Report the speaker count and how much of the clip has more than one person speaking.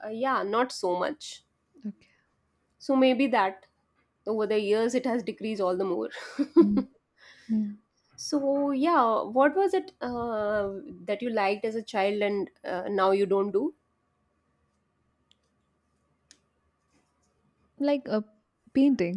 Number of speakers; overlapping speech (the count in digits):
2, no overlap